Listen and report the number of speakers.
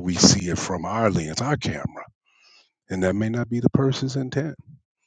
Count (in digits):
1